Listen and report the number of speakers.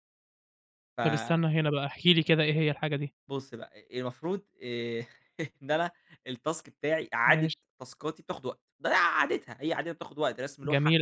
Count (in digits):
2